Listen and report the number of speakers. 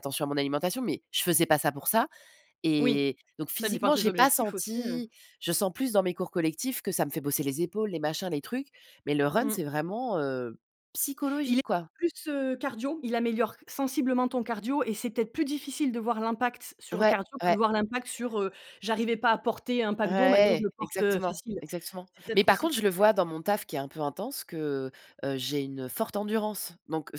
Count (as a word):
two